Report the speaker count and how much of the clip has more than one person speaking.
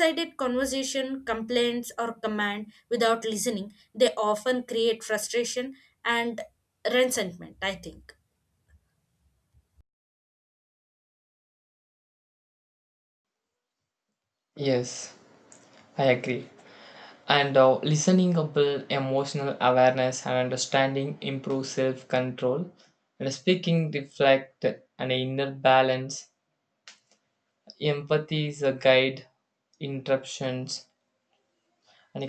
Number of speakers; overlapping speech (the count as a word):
two, no overlap